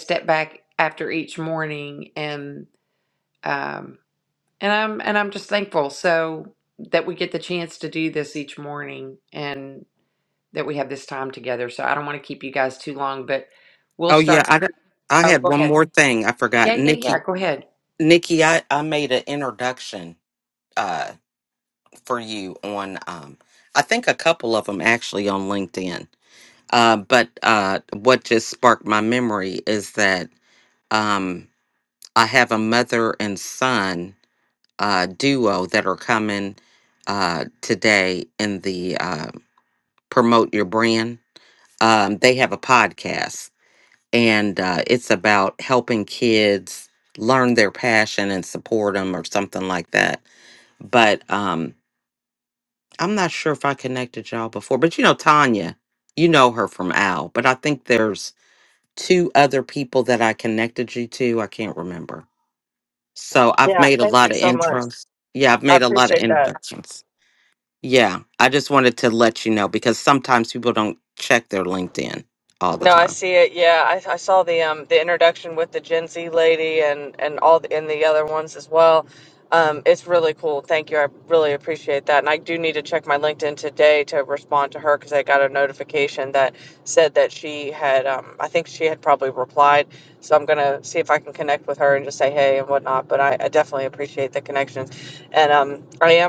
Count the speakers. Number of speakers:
three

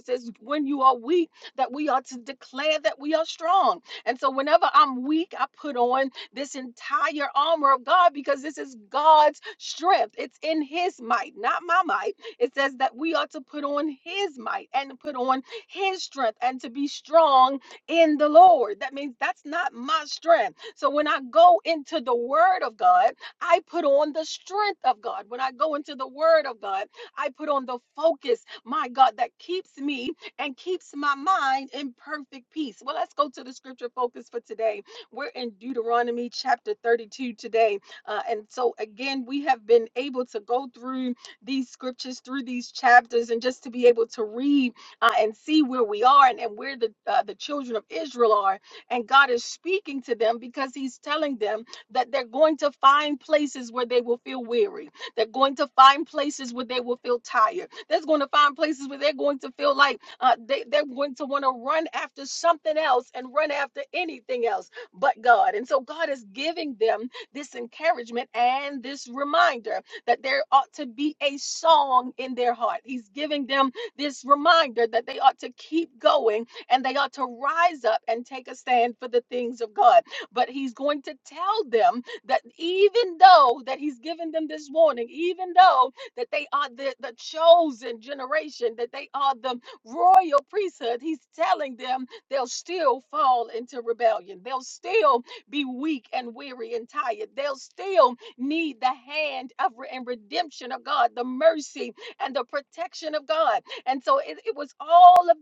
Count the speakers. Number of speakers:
one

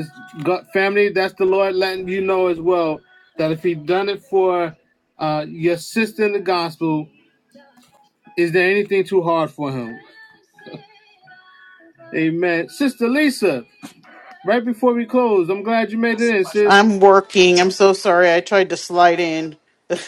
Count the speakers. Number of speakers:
two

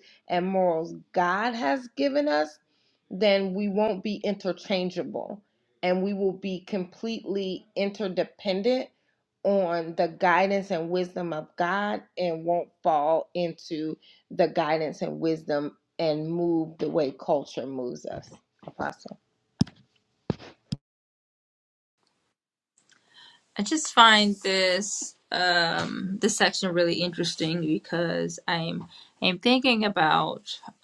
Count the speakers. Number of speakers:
two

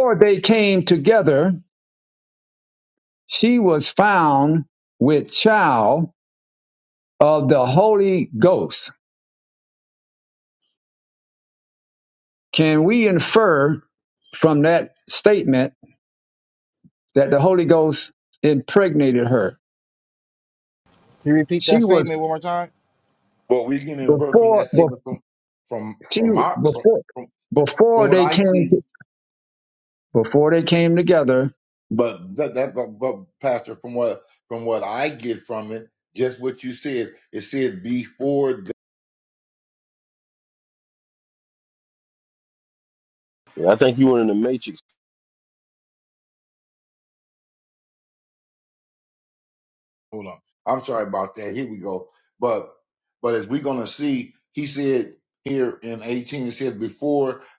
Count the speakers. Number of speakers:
four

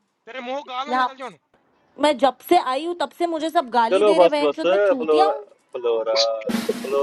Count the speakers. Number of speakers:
three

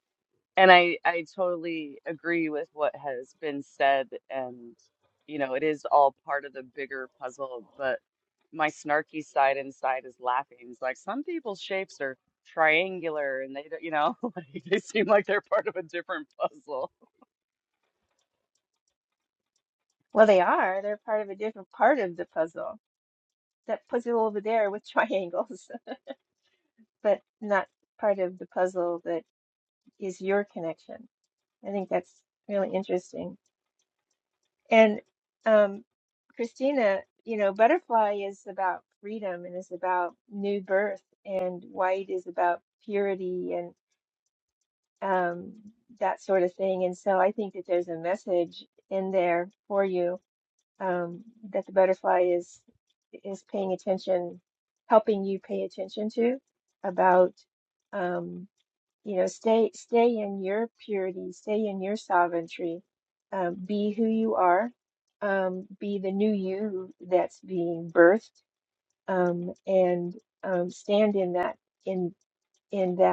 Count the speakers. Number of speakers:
two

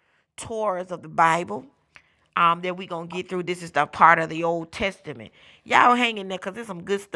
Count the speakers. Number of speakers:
one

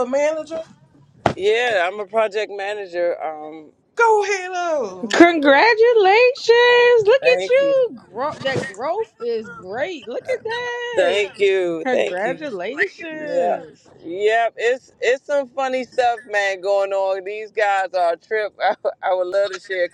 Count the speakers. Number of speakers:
three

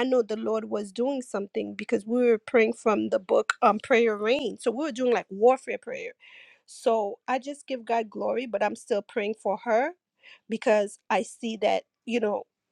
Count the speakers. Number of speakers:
one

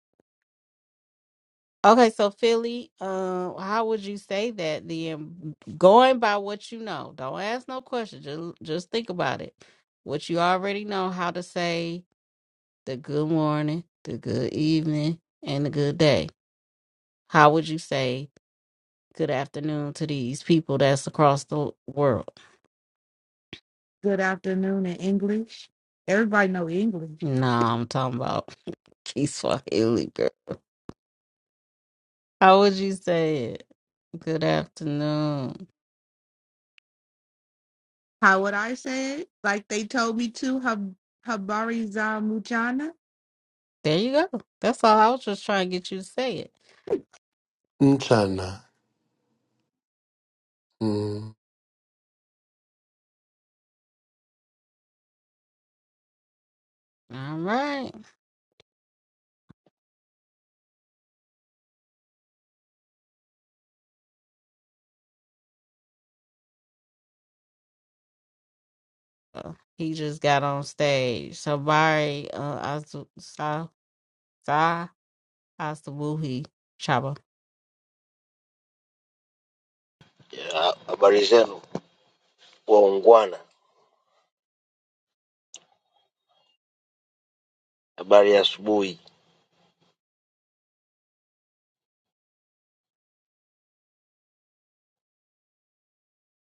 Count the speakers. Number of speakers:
four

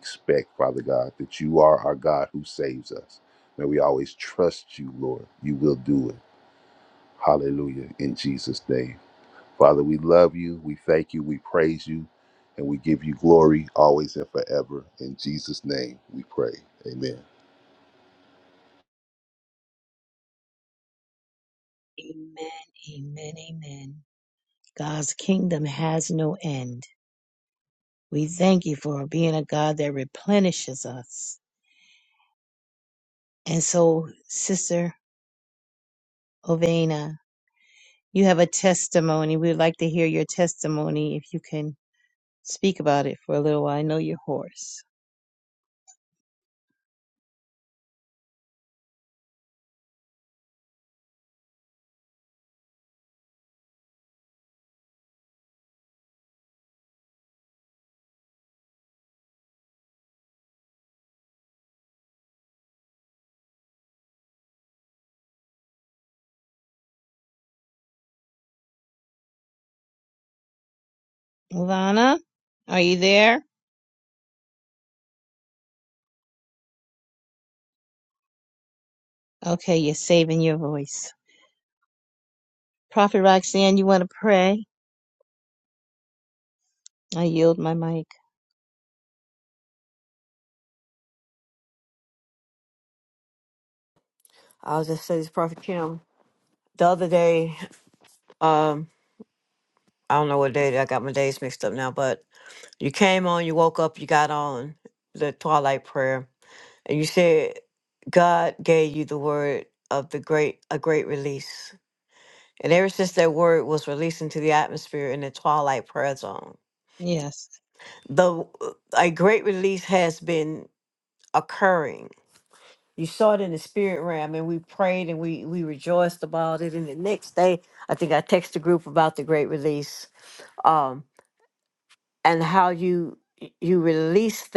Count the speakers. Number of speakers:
three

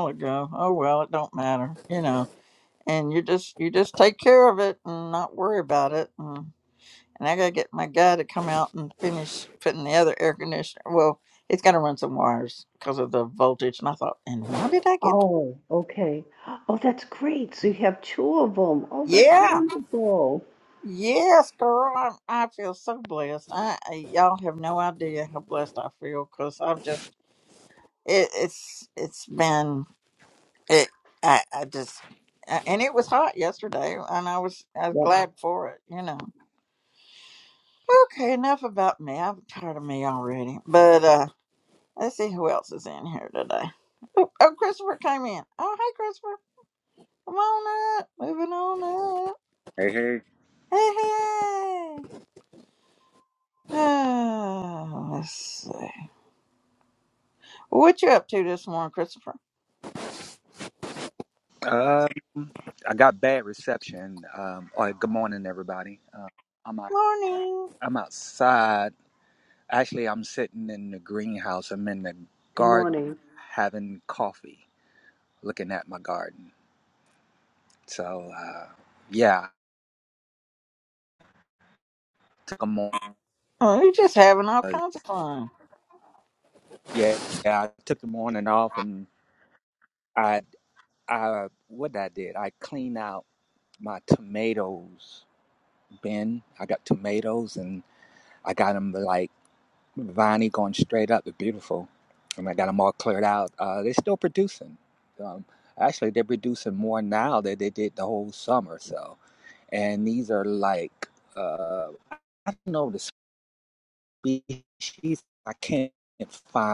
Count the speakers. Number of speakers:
three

